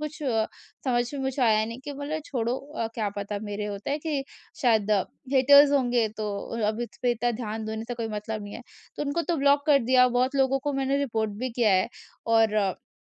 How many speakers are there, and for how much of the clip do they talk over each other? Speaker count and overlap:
1, no overlap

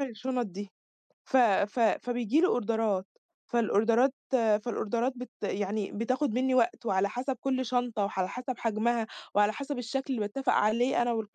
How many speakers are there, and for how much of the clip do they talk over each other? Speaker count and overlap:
1, no overlap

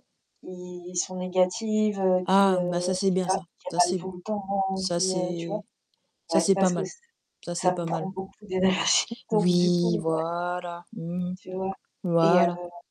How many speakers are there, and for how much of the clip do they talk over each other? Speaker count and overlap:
2, about 37%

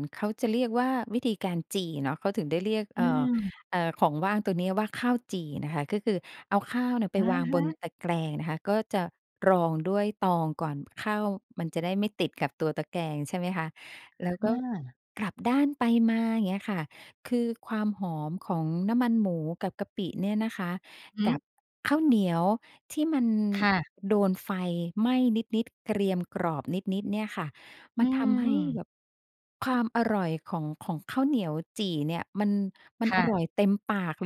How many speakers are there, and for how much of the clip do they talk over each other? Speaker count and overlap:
2, about 5%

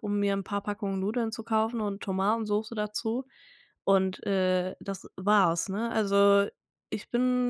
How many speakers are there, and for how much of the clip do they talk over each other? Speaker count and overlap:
1, no overlap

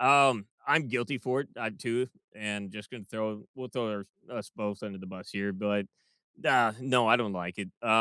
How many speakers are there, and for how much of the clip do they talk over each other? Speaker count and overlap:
1, no overlap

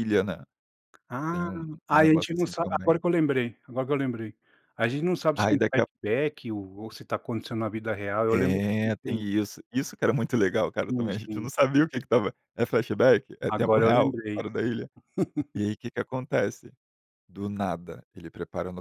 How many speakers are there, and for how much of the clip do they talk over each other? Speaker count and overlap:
2, about 19%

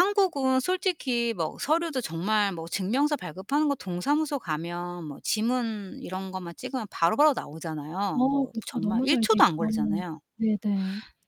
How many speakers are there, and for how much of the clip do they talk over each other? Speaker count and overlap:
2, about 14%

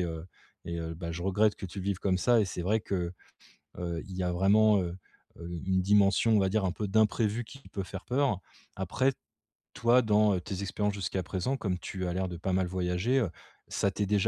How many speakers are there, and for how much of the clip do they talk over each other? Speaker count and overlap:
1, no overlap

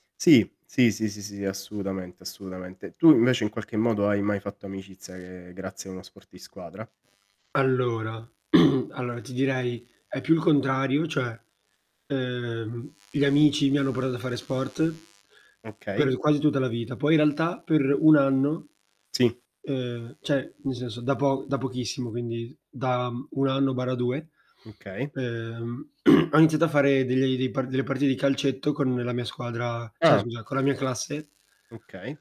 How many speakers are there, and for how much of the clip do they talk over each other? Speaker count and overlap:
2, about 1%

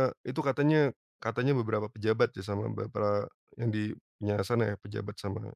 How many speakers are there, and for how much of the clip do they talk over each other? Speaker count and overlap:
1, no overlap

